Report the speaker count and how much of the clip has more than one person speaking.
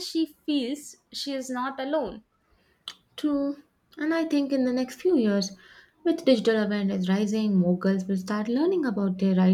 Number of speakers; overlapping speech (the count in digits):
2, no overlap